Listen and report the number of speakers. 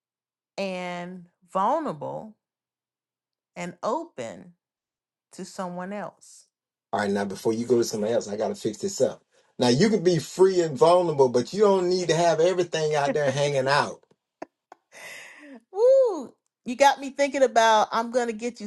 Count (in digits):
2